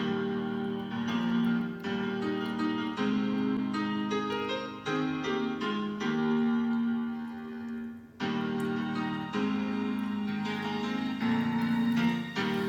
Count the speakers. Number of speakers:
0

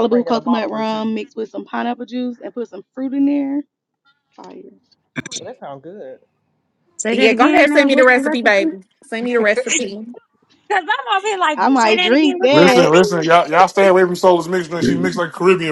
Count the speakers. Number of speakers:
5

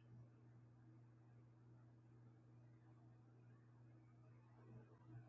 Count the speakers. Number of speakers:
0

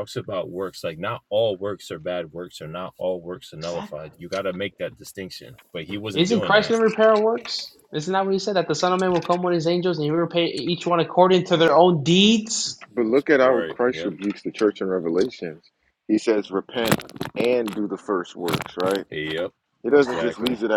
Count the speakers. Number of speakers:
3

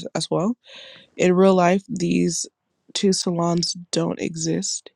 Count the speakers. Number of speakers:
1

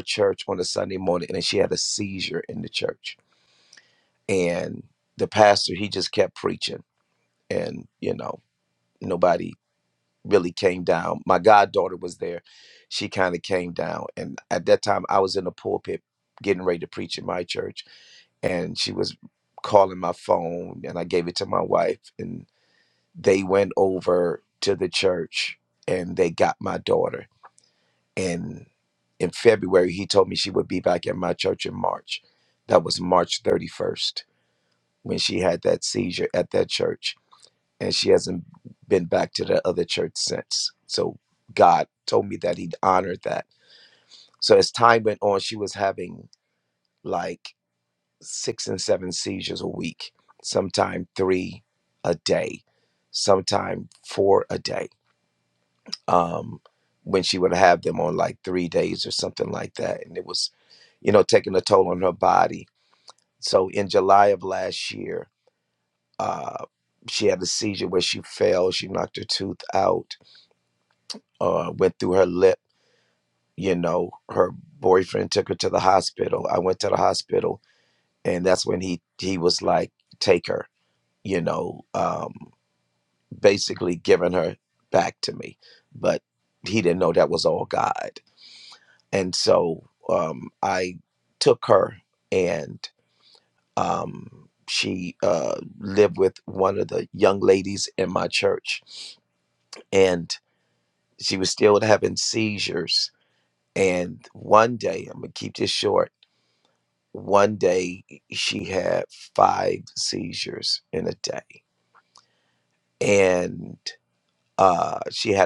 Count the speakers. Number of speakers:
1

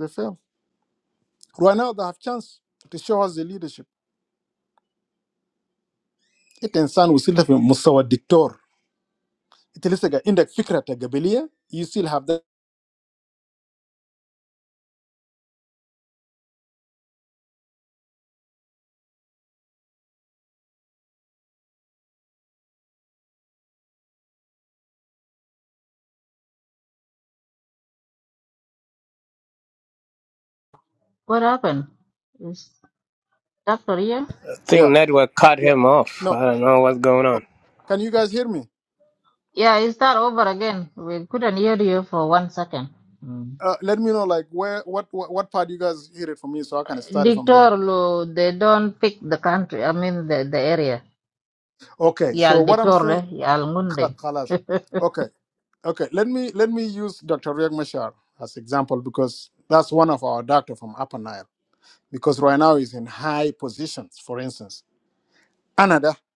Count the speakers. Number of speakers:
3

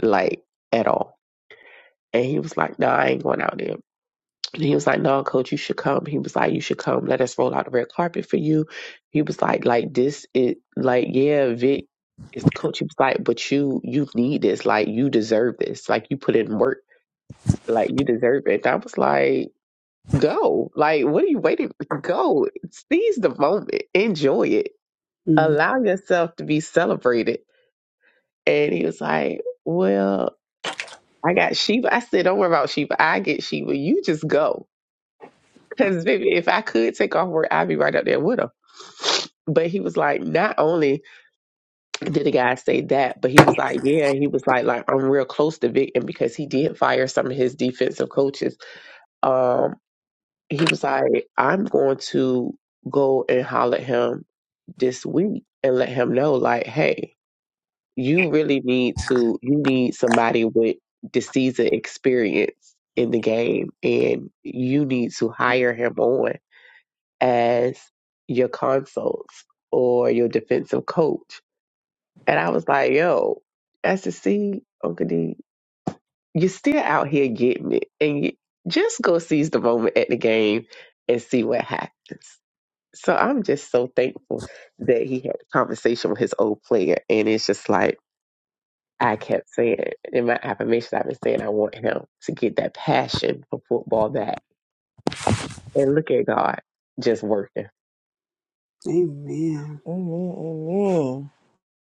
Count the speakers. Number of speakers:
3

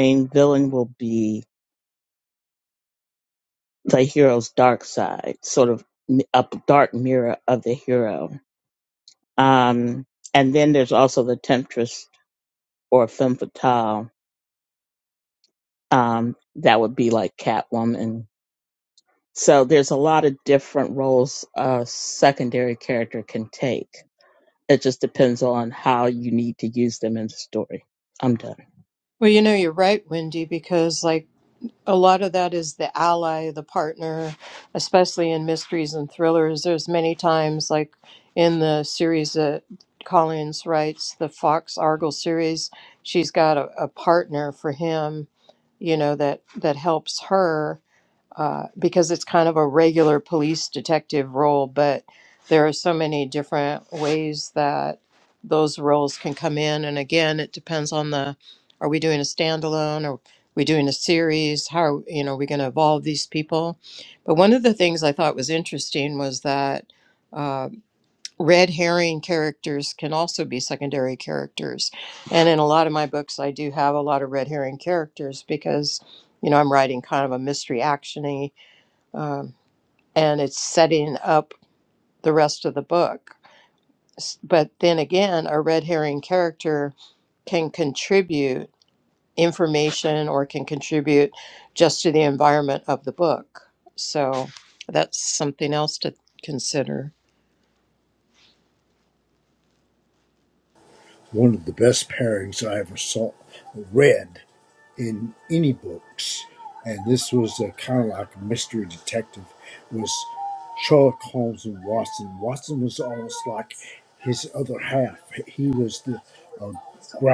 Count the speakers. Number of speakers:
3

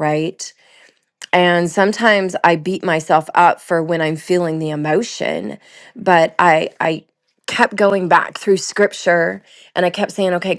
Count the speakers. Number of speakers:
1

